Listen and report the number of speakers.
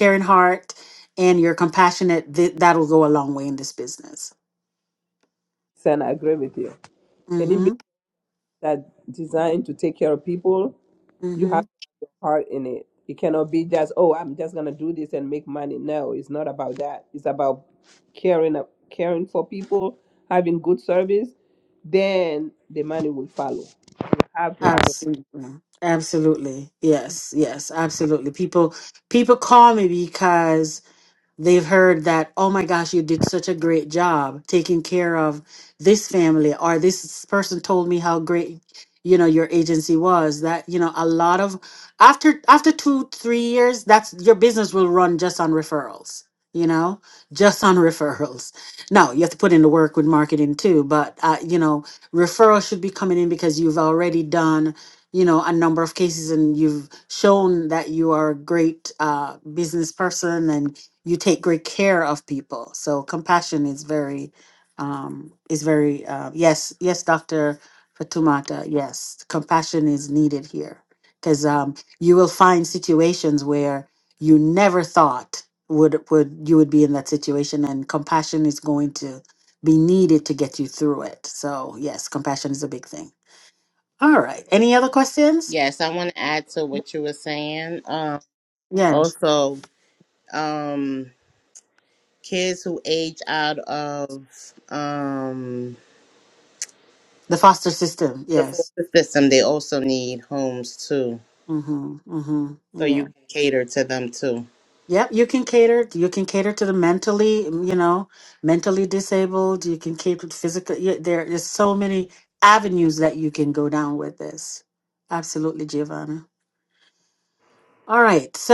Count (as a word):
three